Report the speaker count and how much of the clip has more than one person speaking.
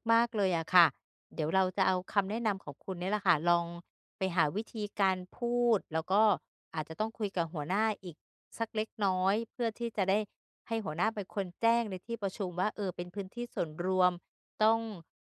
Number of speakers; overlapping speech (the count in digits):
1, no overlap